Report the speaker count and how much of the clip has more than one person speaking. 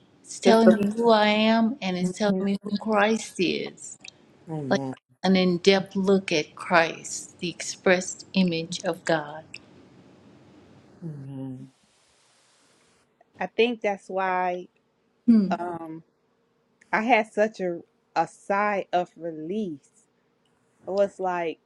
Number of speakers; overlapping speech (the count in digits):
3, about 5%